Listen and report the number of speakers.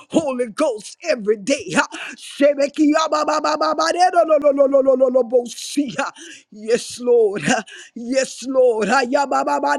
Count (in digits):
1